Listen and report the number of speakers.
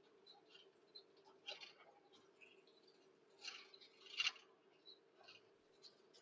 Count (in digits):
0